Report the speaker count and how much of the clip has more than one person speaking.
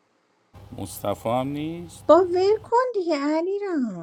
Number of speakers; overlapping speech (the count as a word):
two, about 1%